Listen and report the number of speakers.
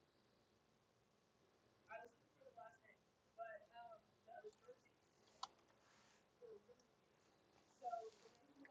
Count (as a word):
zero